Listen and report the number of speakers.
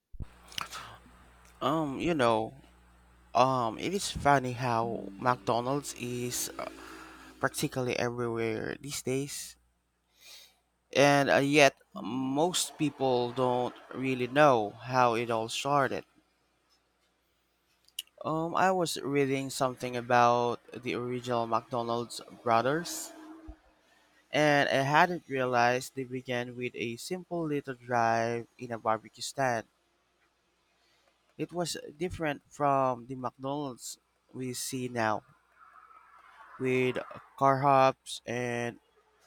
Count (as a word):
one